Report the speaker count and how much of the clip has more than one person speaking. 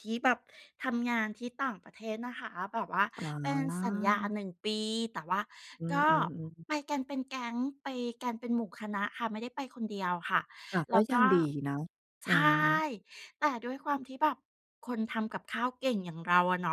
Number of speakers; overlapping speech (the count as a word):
two, about 8%